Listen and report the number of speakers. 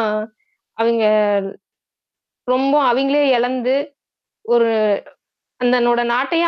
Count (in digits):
1